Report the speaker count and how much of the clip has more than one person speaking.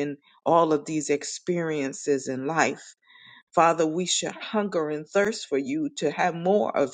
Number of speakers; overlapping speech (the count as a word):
one, no overlap